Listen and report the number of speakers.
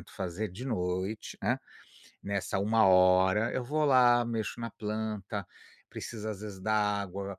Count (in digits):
1